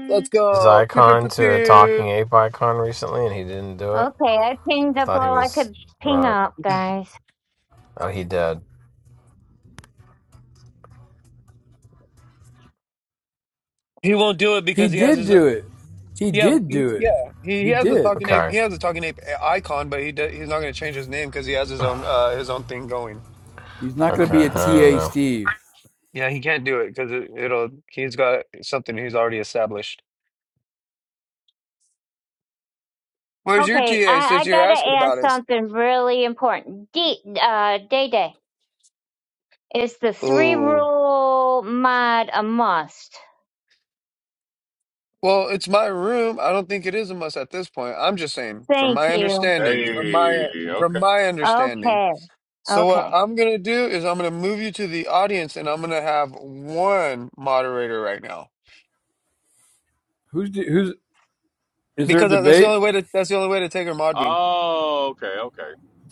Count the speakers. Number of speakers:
five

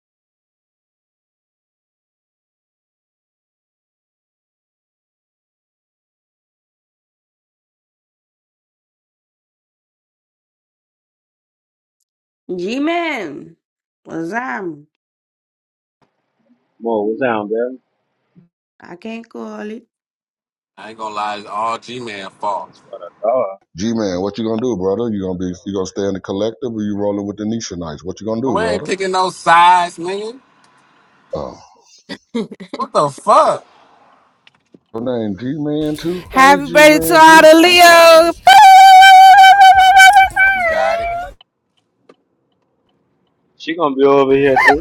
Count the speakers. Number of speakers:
five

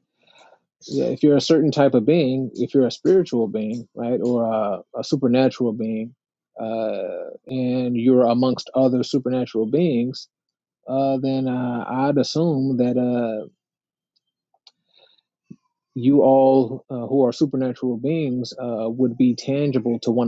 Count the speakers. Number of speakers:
one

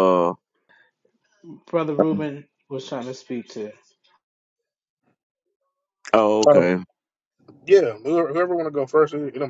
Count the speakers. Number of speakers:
three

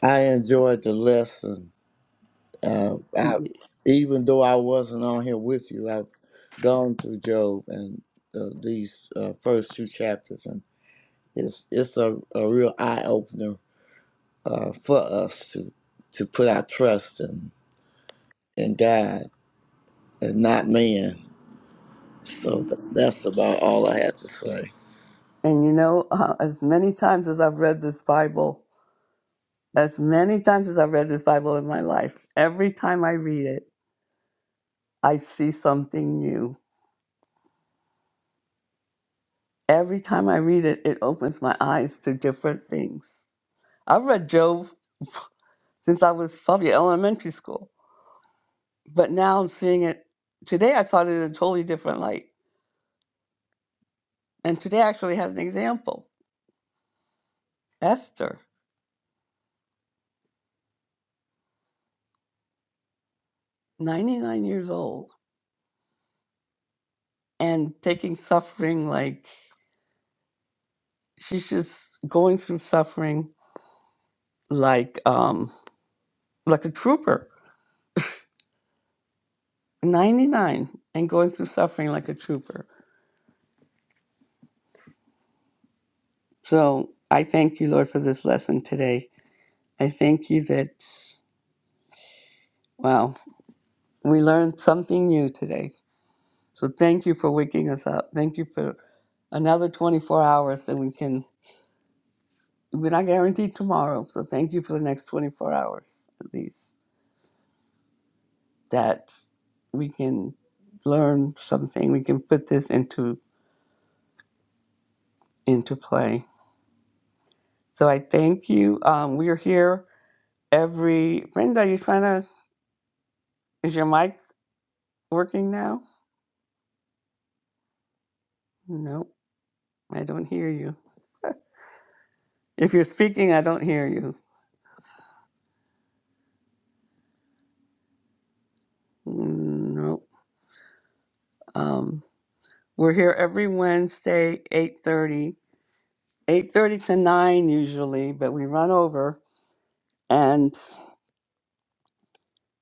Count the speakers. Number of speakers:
two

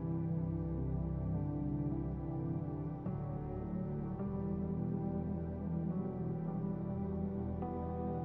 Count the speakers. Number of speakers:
zero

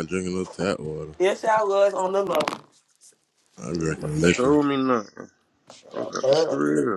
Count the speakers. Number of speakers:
three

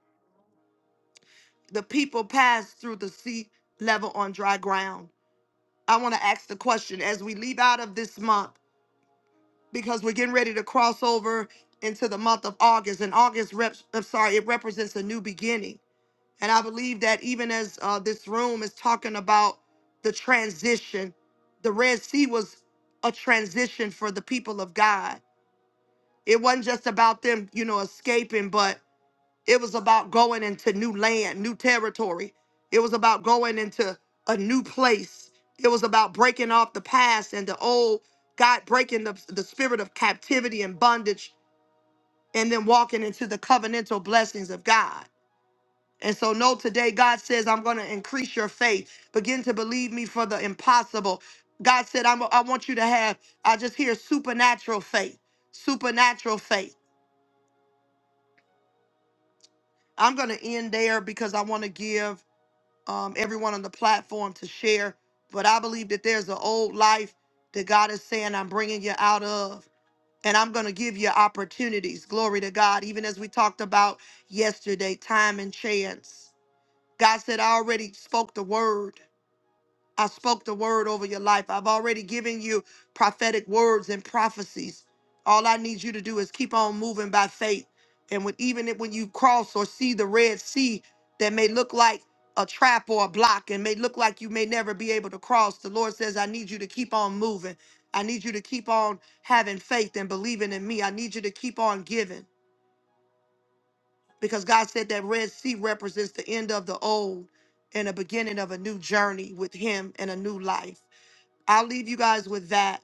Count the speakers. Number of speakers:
one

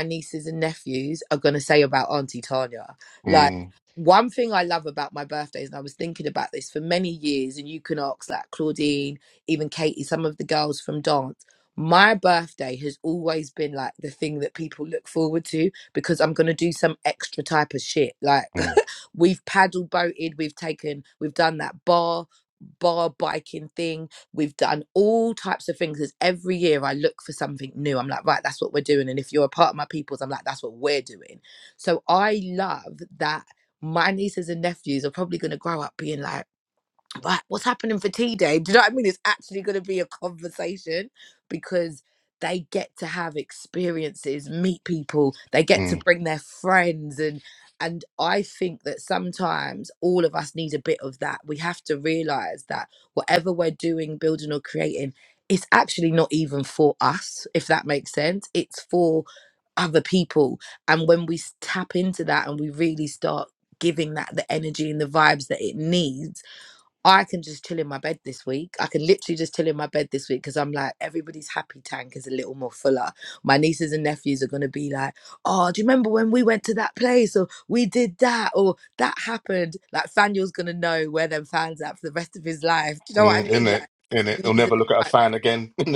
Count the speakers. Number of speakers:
two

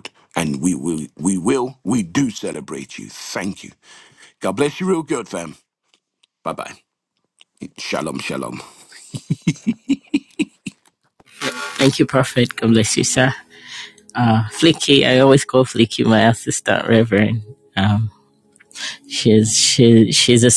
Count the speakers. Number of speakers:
two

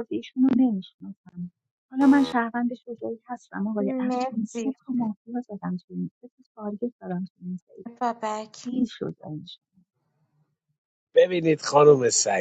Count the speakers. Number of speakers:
three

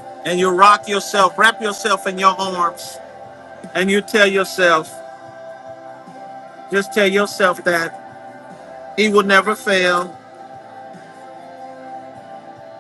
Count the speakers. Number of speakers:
one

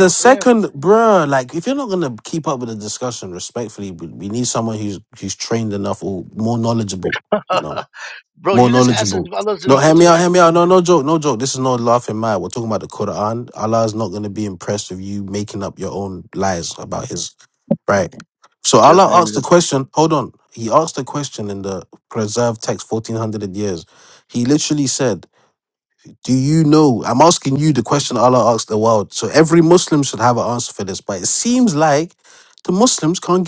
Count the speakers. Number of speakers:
two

